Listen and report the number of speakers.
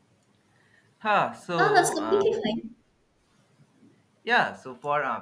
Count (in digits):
2